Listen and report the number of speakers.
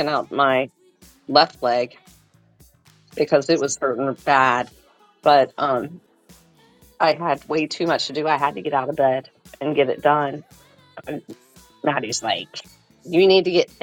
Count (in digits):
1